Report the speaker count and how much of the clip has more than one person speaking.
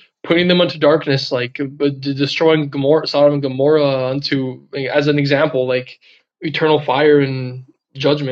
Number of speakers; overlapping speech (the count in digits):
1, no overlap